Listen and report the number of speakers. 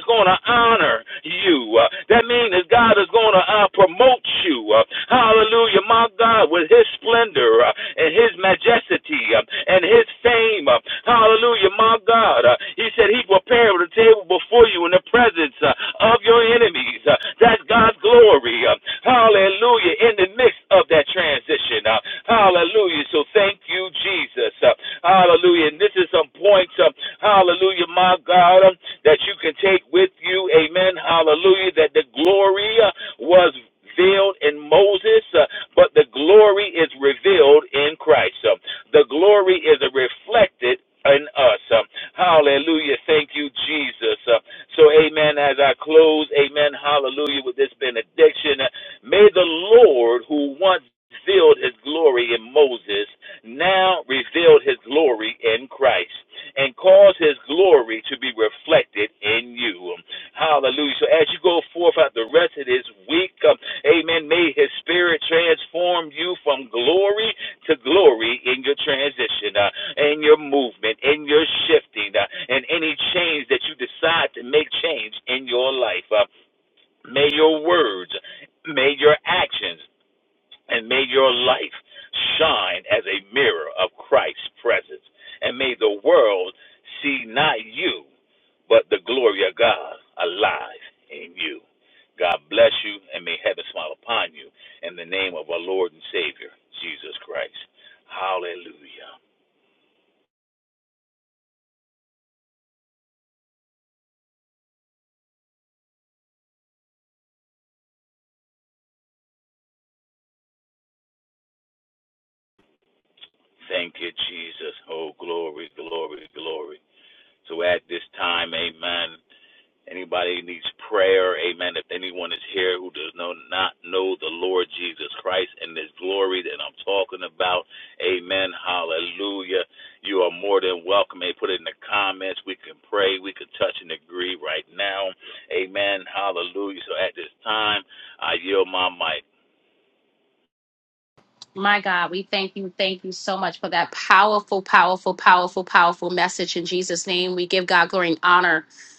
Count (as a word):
two